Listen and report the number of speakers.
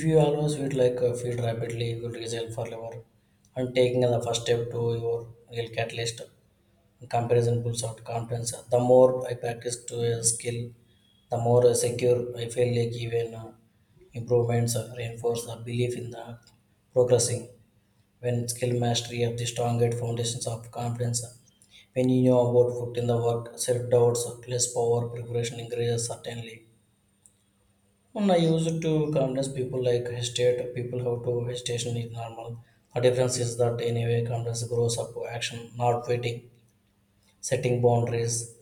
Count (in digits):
1